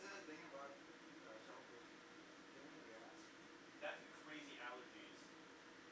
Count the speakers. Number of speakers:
two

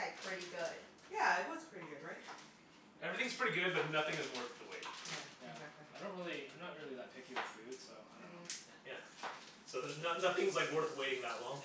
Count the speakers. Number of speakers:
four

